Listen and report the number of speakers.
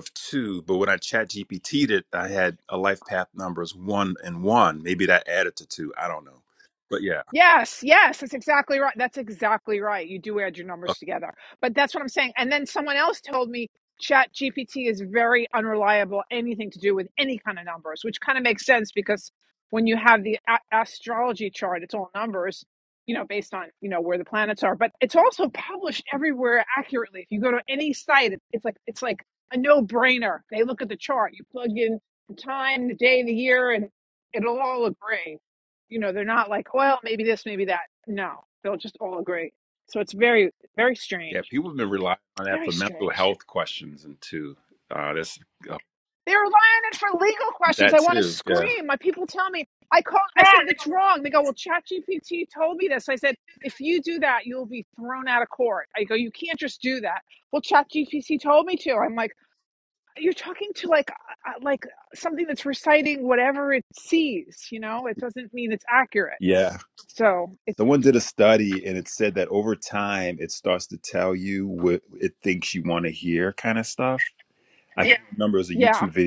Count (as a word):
two